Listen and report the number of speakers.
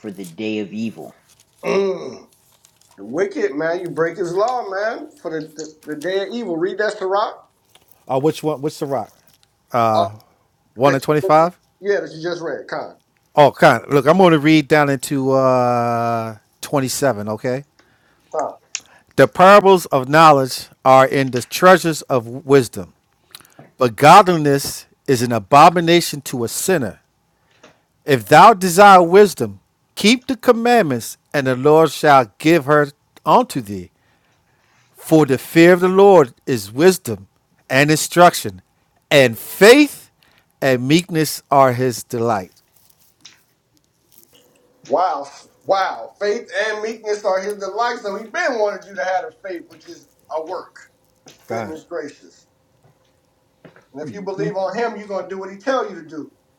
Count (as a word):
three